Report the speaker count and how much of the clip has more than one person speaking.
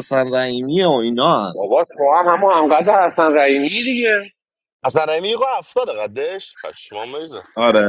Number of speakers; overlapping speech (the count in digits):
3, no overlap